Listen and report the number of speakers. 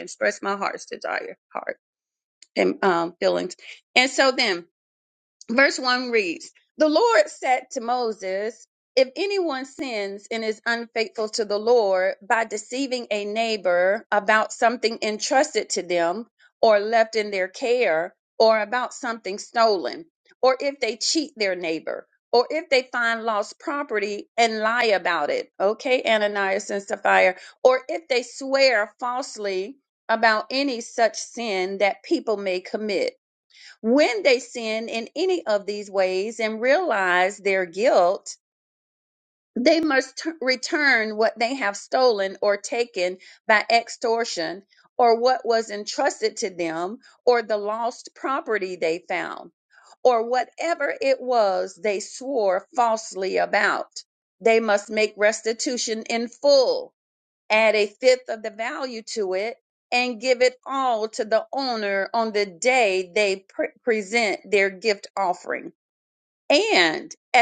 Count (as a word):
one